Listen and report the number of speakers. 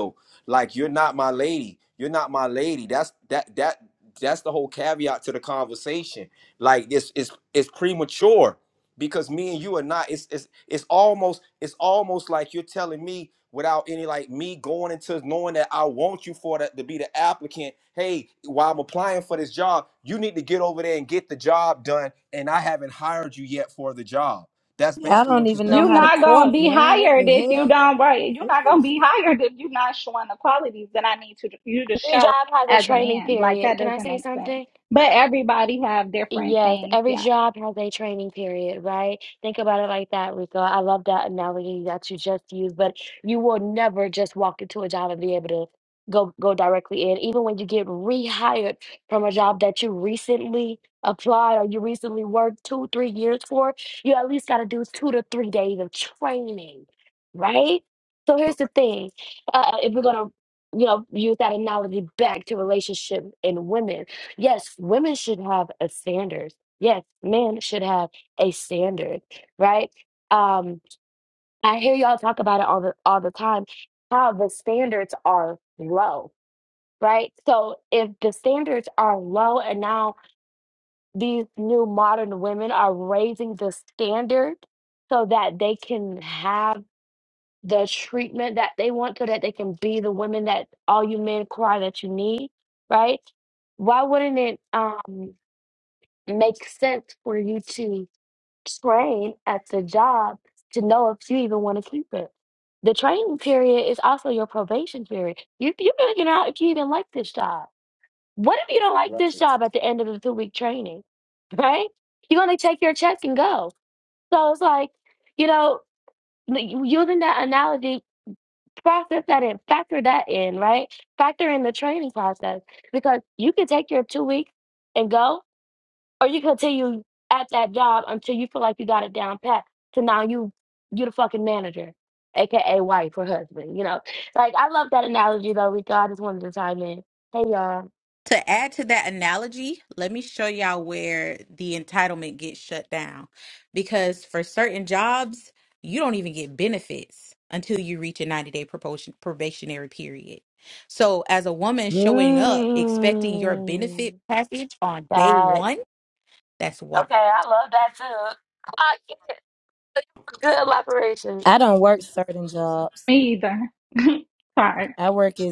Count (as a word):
five